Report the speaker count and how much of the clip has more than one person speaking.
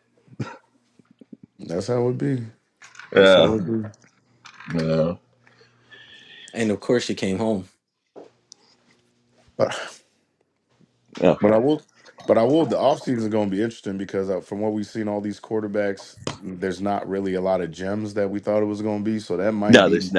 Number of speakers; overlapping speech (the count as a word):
three, about 5%